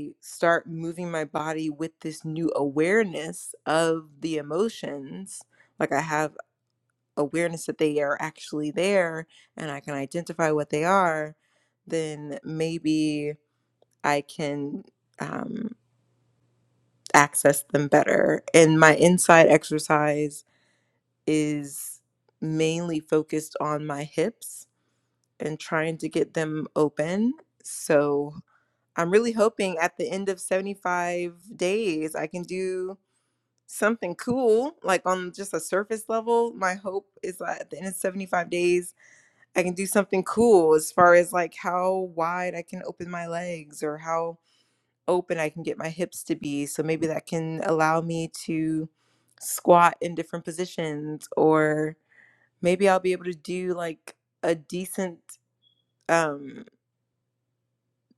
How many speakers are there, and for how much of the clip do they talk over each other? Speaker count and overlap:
1, no overlap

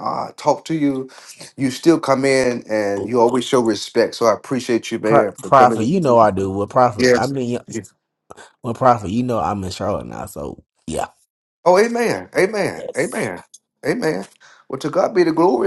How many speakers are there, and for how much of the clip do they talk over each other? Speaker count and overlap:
2, about 11%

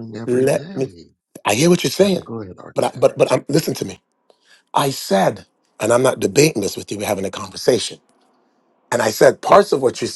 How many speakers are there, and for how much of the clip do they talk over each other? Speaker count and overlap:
2, about 11%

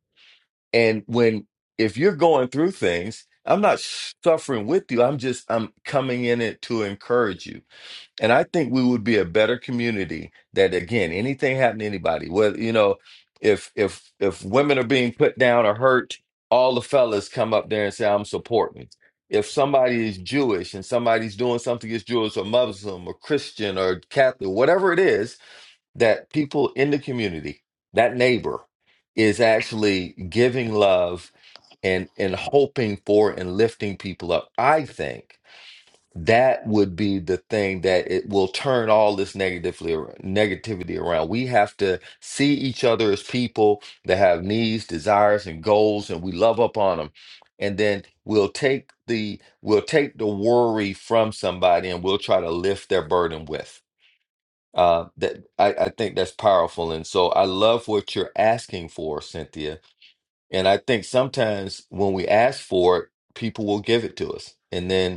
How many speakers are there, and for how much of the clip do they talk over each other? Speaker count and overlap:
1, no overlap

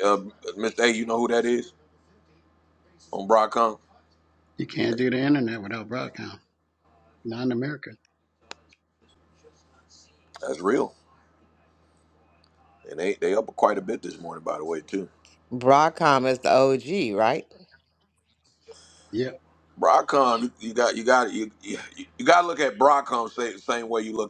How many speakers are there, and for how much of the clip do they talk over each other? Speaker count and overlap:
3, no overlap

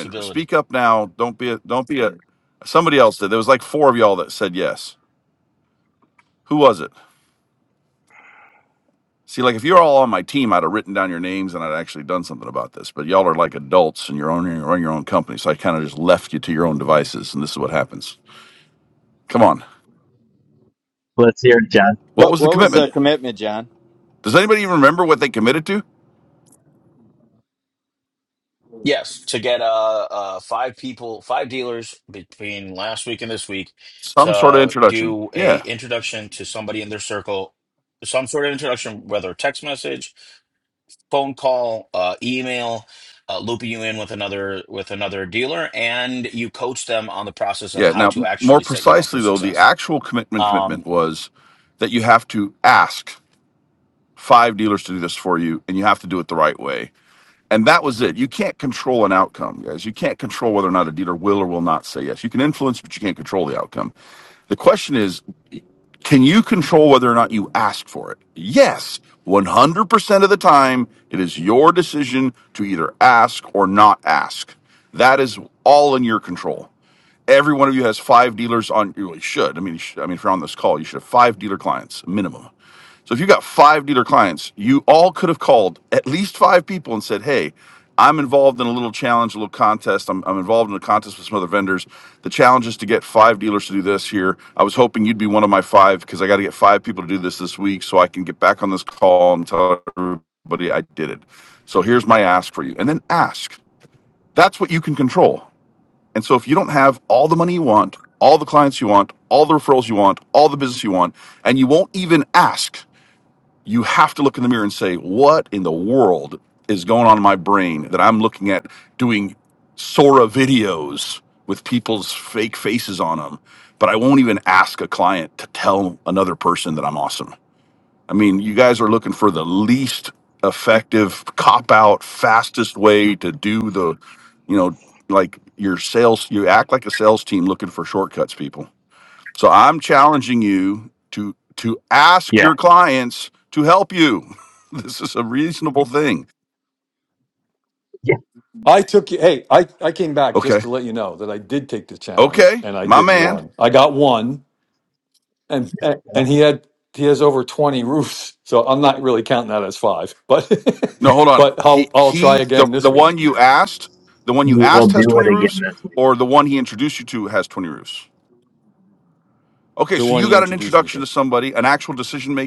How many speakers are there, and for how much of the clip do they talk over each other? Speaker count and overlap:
5, about 6%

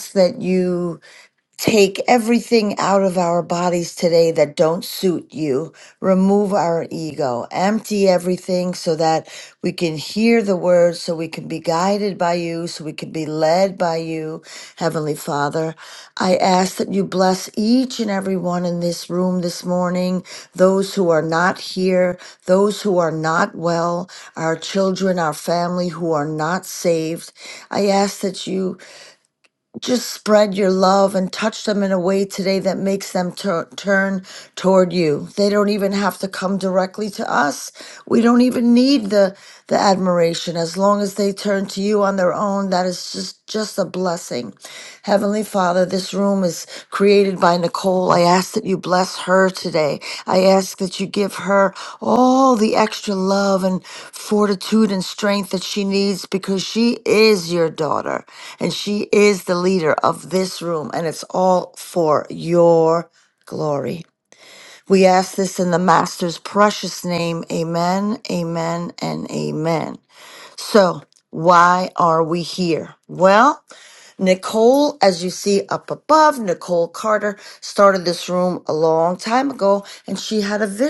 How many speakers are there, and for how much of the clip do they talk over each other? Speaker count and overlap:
1, no overlap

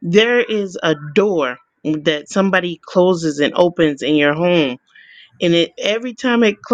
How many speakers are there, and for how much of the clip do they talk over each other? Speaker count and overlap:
1, no overlap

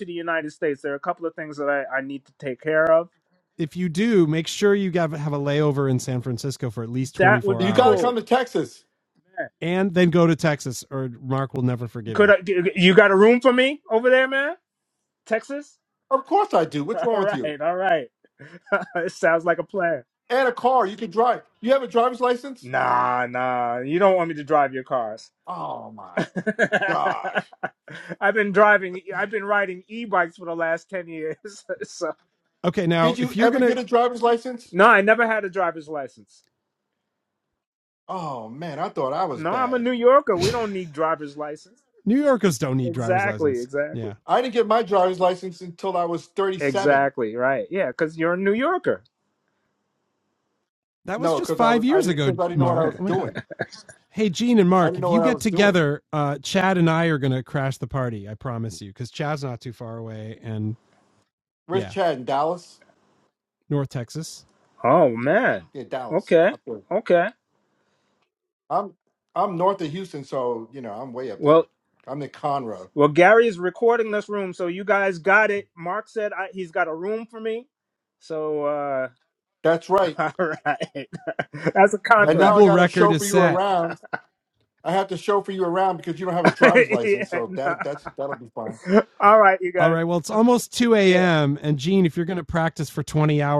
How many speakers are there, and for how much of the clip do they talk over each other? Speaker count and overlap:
3, about 11%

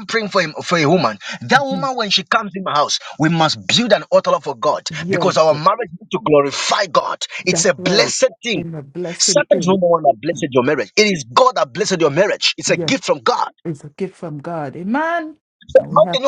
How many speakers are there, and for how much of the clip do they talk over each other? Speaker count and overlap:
2, about 15%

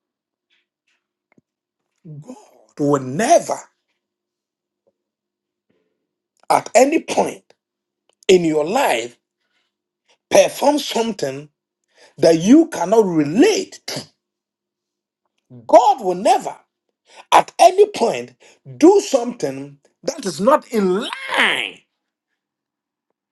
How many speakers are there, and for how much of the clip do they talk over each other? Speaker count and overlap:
1, no overlap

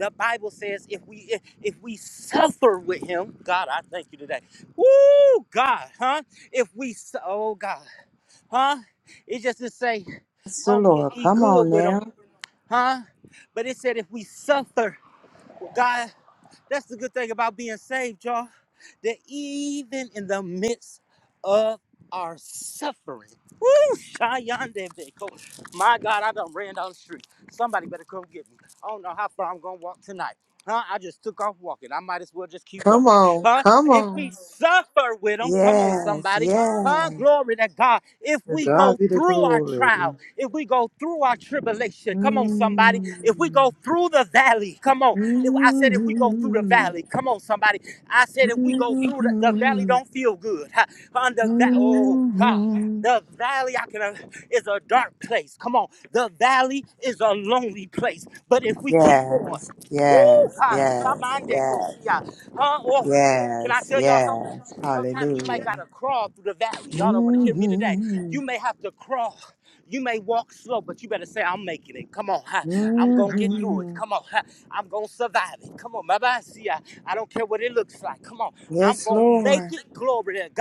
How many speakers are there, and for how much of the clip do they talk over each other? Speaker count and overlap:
2, about 22%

